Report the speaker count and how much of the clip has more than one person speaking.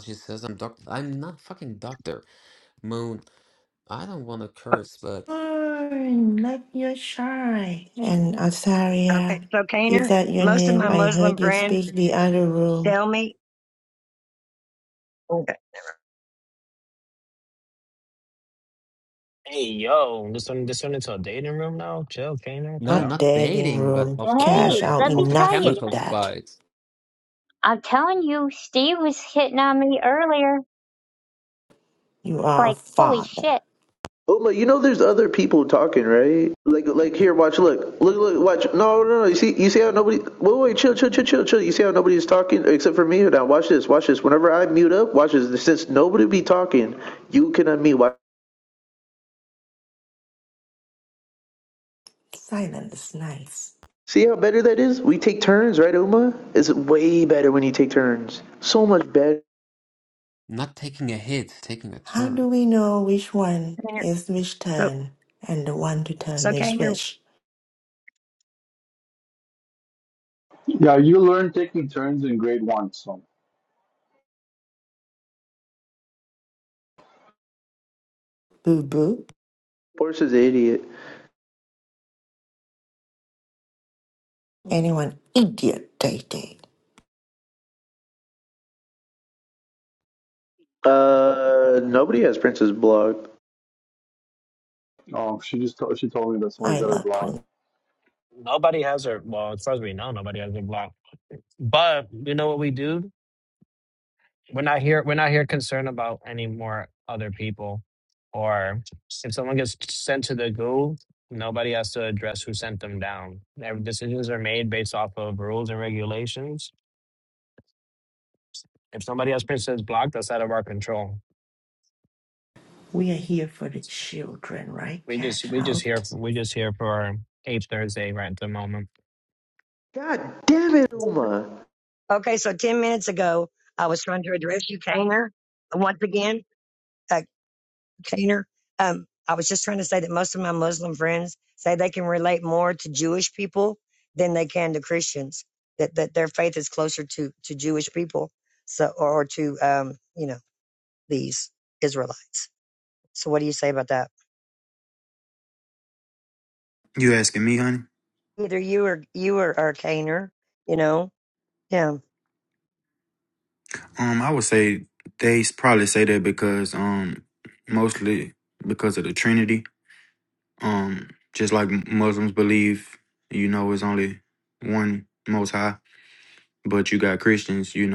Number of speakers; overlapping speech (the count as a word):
eight, about 5%